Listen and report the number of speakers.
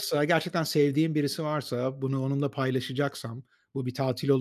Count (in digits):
1